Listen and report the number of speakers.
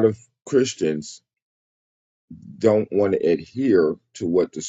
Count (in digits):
1